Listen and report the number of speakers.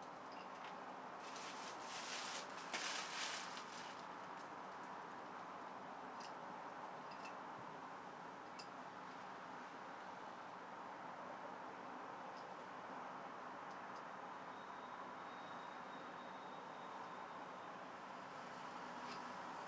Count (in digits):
0